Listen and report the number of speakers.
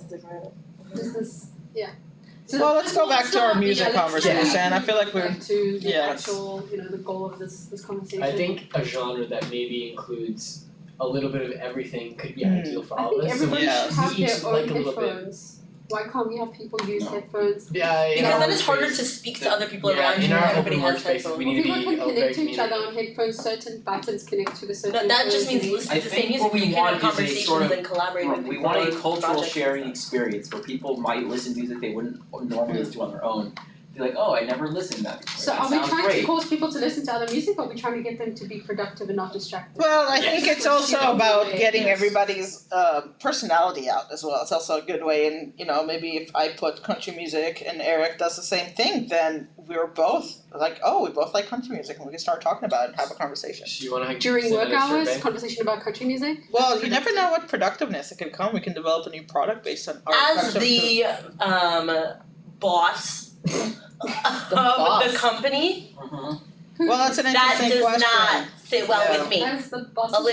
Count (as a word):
five